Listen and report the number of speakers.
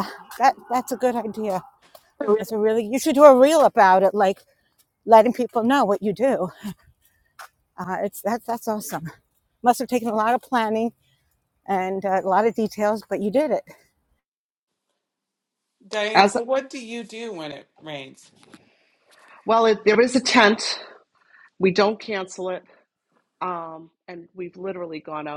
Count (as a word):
three